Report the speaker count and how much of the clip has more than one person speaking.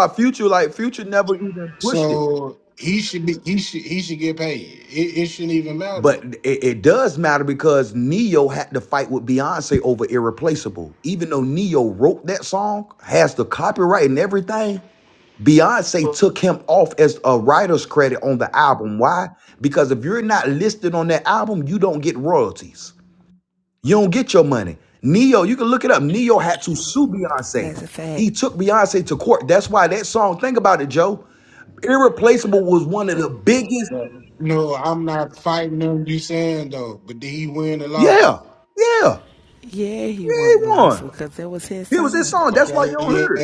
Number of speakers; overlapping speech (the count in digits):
3, about 8%